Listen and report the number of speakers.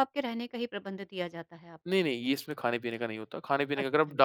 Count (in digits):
2